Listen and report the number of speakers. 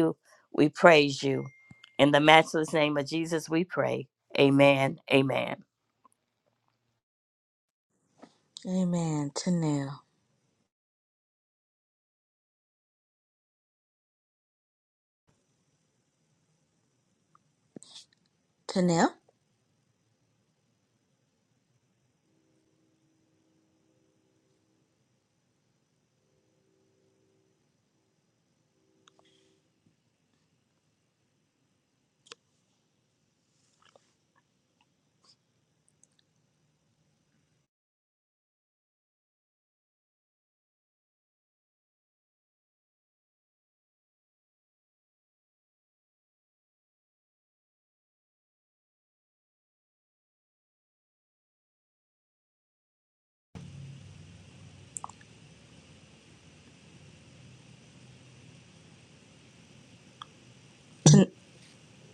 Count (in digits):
2